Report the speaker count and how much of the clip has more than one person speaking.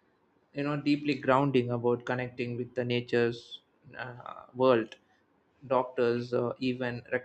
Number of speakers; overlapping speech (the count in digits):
1, no overlap